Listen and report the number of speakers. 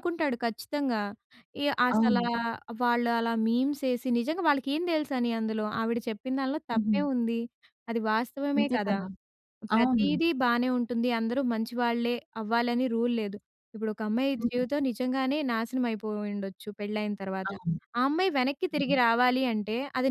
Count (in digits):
2